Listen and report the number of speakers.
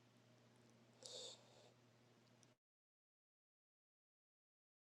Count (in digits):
0